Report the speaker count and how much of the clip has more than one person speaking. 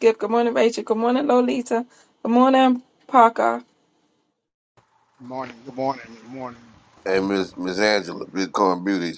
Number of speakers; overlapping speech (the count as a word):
three, no overlap